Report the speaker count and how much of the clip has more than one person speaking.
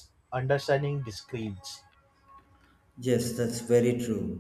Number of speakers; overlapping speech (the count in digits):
2, no overlap